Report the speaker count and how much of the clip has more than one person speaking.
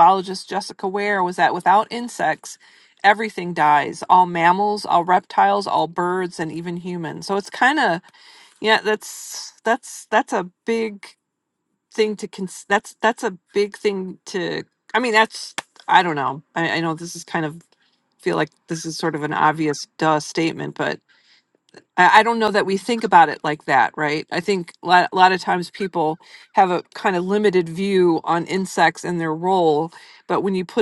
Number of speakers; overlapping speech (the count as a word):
one, no overlap